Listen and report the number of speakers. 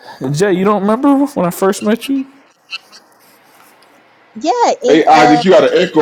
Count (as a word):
three